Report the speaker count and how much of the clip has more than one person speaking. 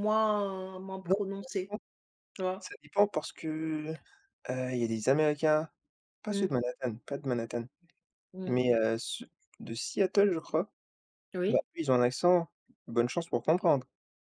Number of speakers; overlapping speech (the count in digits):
2, about 6%